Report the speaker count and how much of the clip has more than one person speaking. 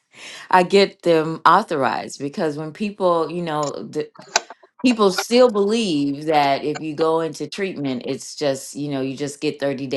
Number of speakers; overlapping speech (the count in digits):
1, no overlap